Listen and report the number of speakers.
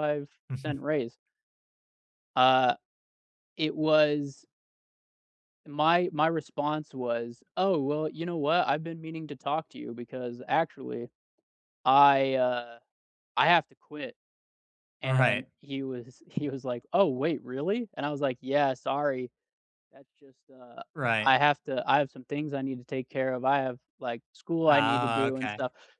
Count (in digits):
2